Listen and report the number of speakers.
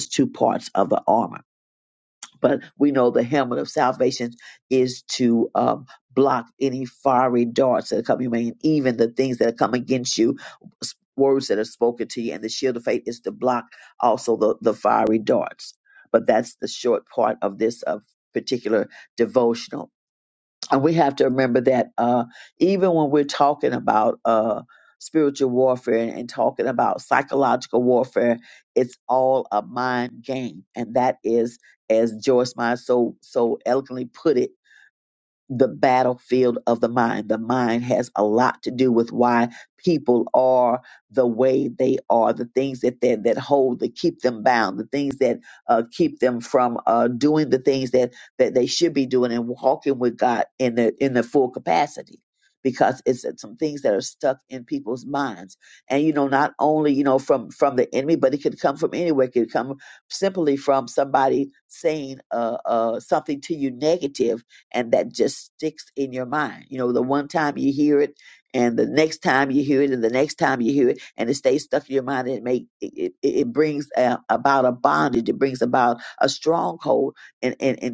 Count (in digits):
1